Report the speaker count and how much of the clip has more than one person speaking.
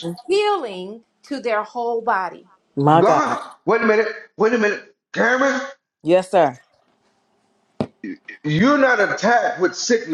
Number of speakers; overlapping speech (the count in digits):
3, about 6%